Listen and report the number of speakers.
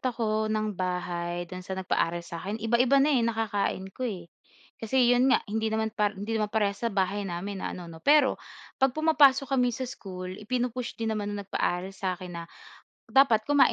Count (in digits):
1